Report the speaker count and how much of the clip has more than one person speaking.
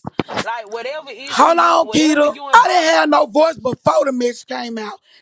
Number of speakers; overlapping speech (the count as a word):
two, about 31%